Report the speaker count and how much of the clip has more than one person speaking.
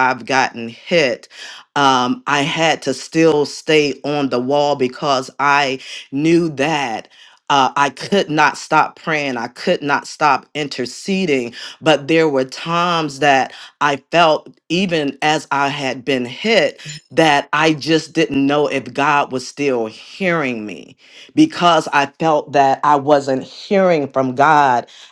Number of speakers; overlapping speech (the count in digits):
1, no overlap